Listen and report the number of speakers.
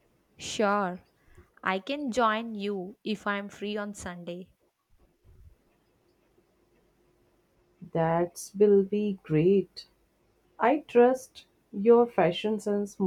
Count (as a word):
two